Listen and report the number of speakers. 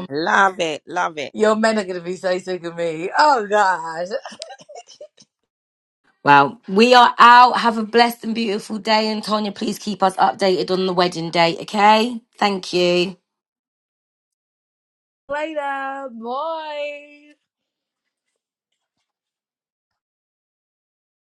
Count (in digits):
3